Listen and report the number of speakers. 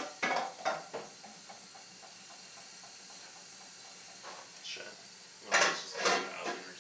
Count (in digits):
1